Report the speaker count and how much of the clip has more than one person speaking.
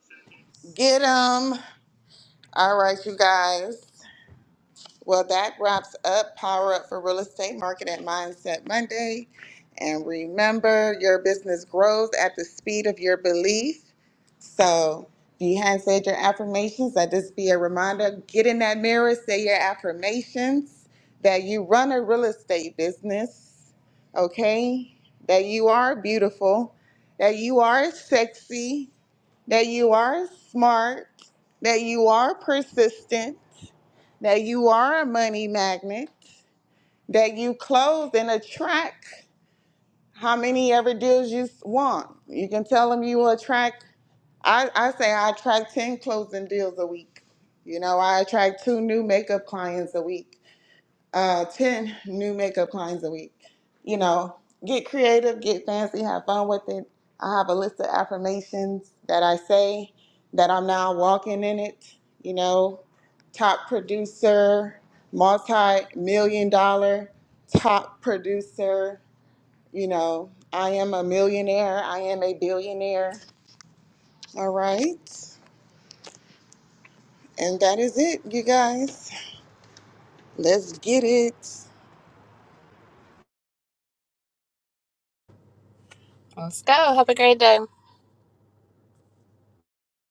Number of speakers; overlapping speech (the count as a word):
two, no overlap